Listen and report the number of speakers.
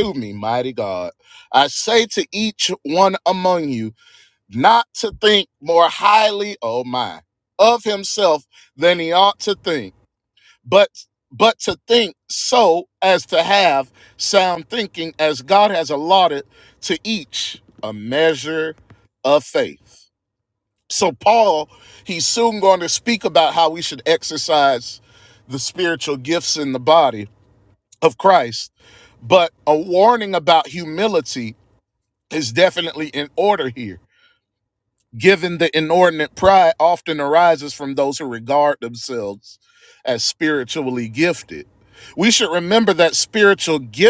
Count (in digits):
1